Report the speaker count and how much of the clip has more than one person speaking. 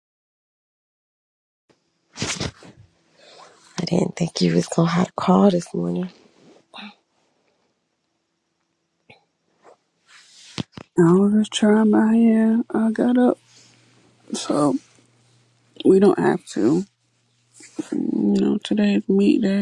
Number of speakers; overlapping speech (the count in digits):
2, no overlap